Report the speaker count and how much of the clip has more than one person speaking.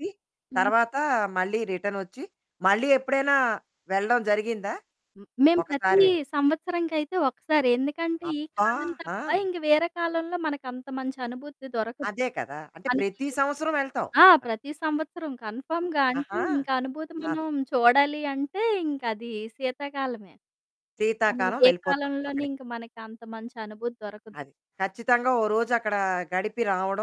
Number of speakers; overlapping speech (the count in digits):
2, about 11%